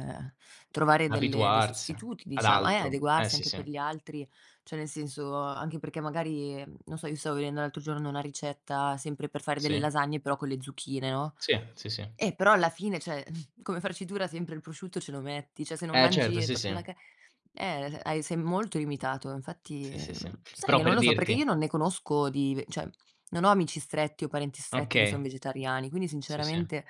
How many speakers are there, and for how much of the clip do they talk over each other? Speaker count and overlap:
2, about 18%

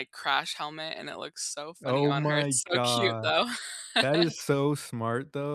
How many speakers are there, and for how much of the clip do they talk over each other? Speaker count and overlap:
2, about 28%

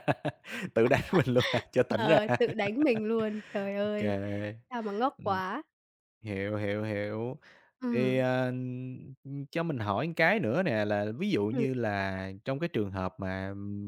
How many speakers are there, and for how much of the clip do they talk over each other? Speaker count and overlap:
2, about 7%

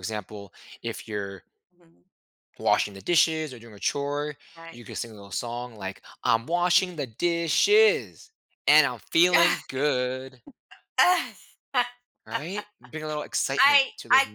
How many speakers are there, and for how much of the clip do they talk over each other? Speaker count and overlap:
2, about 8%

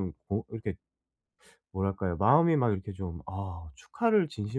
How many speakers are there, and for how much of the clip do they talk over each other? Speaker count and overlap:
1, no overlap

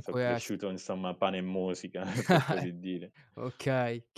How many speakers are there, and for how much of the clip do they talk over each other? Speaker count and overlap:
2, about 13%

